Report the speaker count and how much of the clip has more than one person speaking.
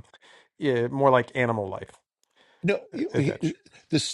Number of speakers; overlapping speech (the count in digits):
2, about 14%